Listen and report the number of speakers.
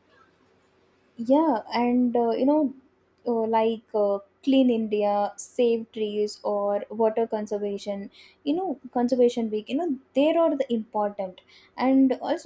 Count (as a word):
one